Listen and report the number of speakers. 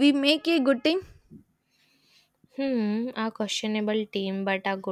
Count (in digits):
2